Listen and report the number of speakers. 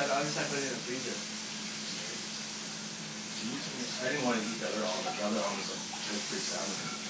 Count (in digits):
2